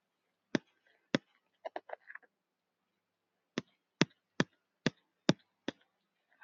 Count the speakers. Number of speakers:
0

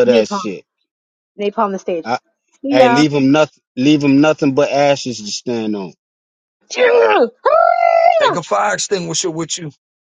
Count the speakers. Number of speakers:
3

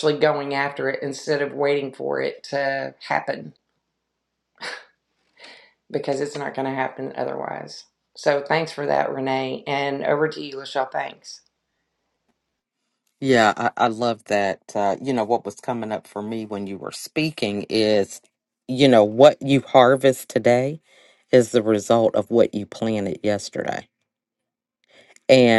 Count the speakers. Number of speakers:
2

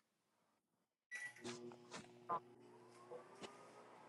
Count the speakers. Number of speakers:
0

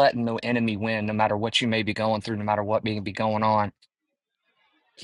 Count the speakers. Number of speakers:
1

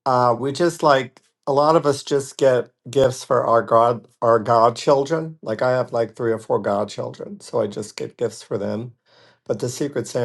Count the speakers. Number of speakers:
1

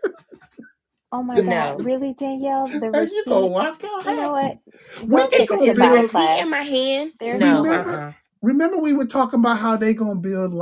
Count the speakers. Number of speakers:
3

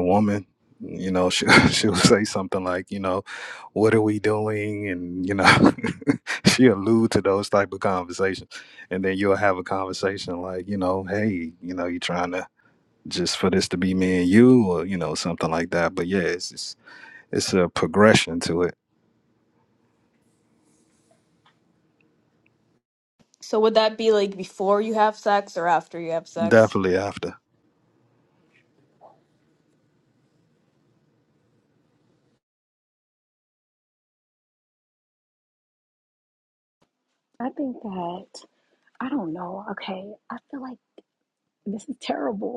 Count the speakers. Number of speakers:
3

